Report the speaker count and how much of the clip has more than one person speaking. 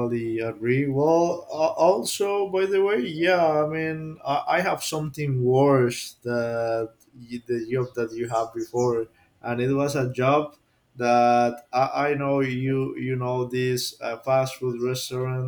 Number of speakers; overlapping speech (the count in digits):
1, no overlap